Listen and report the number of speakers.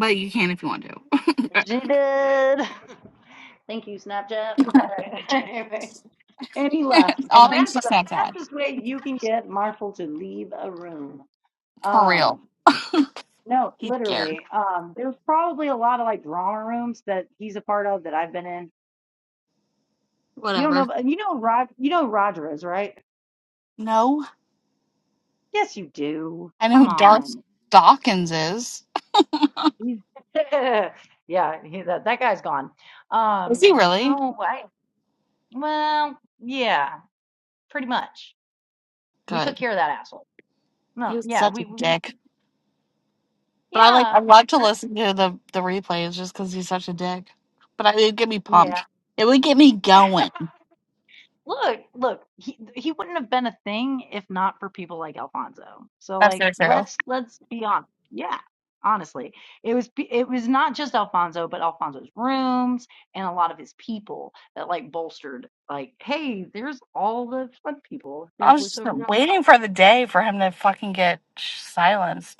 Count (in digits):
2